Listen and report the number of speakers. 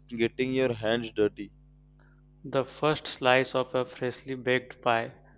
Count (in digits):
2